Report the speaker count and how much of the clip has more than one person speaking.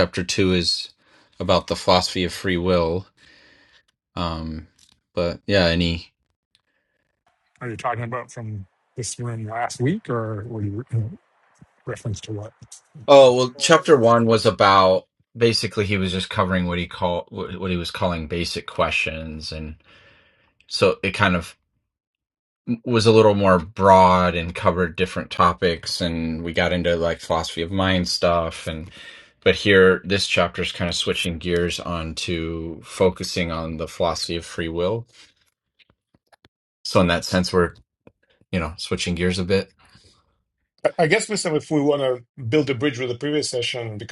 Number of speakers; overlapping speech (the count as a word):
three, no overlap